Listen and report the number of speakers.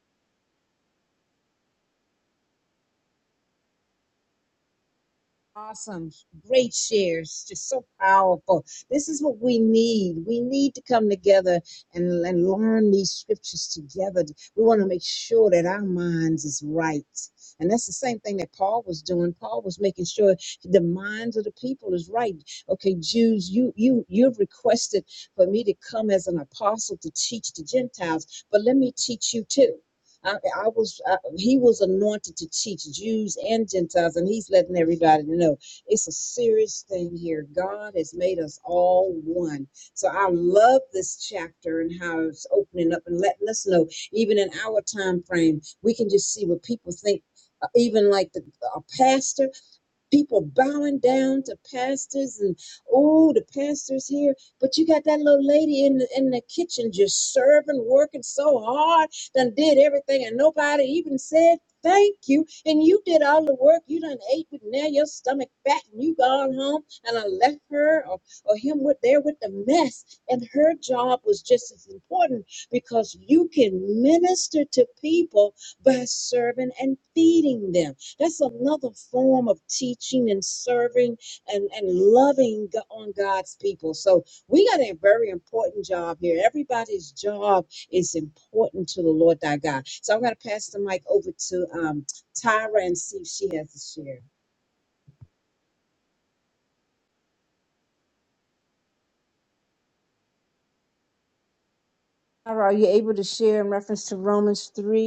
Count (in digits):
1